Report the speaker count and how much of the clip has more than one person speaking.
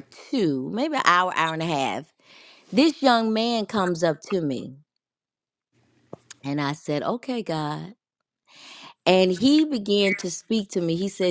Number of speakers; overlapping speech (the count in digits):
1, no overlap